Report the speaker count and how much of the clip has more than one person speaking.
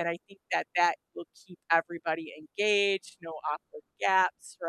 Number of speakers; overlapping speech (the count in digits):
1, no overlap